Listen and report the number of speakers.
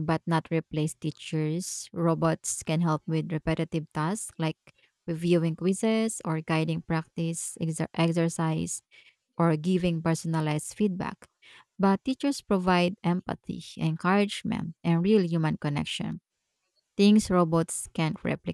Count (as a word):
one